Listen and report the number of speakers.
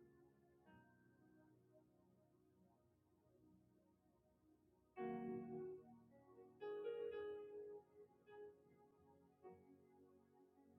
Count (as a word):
zero